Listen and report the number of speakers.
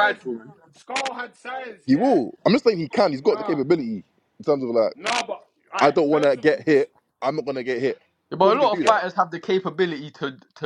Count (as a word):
three